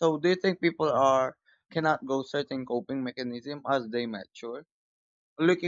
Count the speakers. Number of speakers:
one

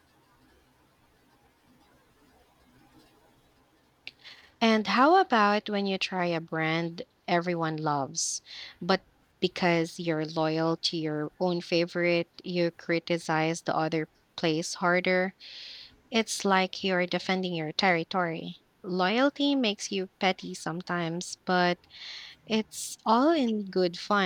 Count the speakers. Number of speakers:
one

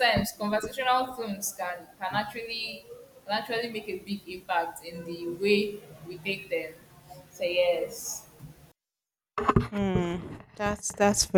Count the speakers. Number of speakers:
two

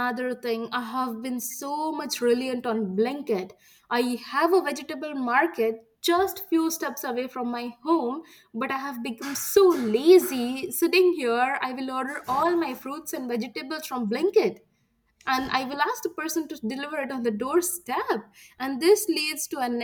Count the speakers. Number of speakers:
one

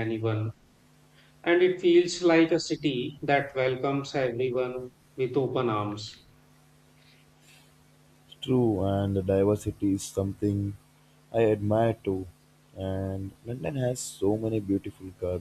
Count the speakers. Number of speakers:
two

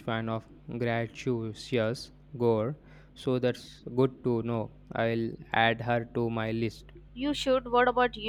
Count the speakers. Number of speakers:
two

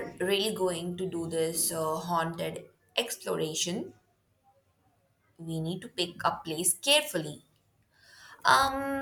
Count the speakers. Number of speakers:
one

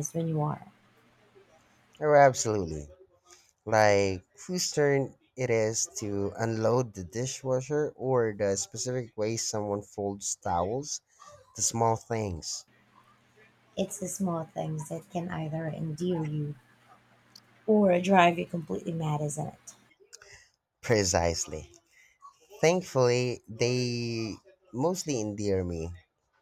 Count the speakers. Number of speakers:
two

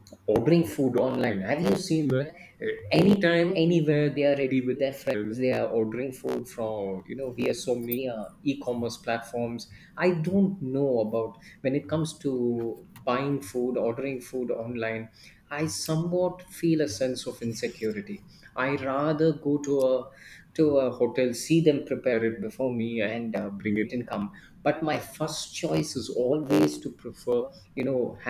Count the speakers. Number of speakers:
one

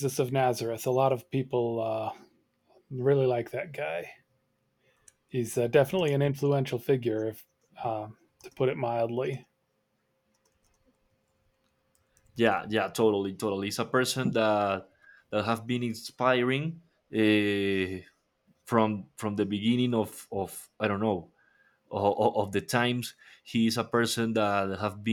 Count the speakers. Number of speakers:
two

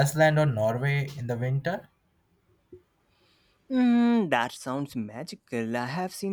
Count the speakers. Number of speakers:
two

